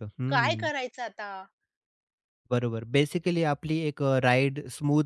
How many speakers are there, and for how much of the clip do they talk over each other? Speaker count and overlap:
two, about 8%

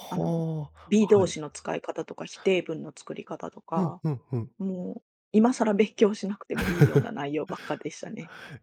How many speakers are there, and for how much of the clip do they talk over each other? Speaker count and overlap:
two, about 10%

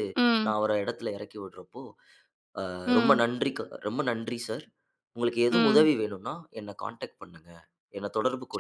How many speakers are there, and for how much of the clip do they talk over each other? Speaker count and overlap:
two, about 10%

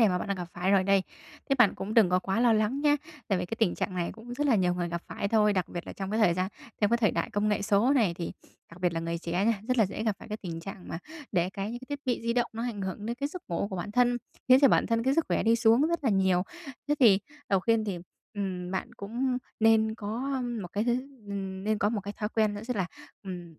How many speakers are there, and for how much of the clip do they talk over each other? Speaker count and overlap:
one, no overlap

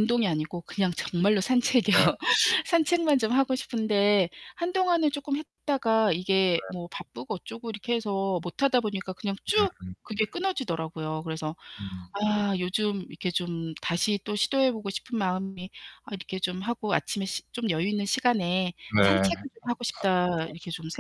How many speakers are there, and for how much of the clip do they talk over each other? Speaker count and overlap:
two, about 2%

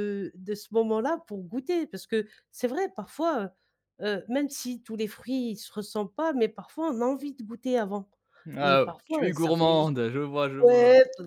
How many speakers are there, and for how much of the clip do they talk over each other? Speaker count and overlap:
two, about 14%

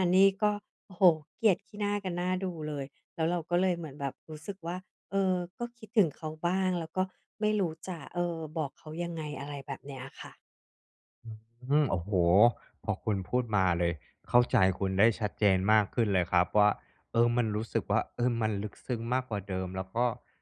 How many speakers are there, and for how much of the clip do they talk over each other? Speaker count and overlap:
two, no overlap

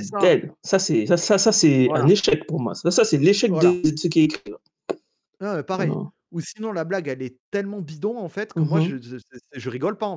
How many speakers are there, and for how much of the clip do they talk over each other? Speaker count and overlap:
two, about 14%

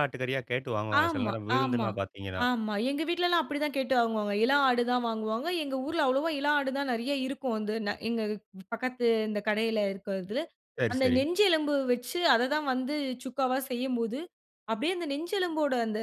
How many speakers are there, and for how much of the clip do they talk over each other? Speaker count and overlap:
two, about 9%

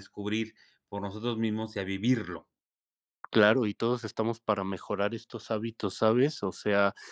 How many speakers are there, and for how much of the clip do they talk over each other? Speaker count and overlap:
two, no overlap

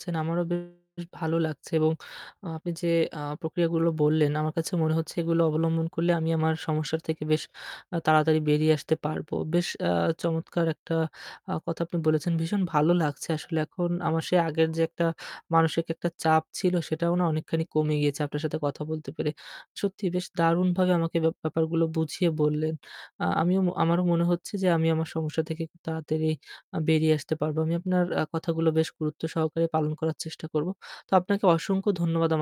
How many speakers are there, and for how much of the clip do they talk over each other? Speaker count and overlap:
one, no overlap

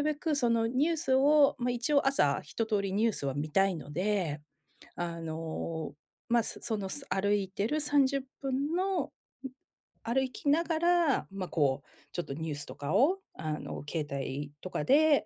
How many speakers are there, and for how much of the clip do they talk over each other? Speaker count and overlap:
one, no overlap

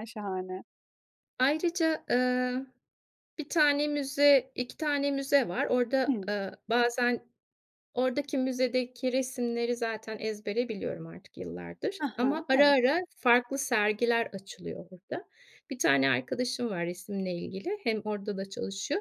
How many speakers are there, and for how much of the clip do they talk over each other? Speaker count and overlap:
two, about 5%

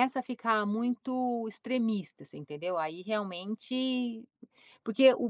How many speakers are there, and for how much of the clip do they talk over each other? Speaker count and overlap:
one, no overlap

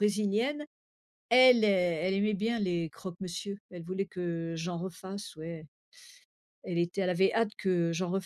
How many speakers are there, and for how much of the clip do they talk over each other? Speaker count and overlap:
one, no overlap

